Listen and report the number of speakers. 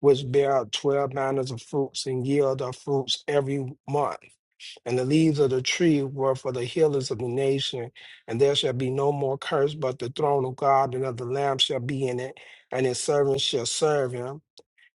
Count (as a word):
one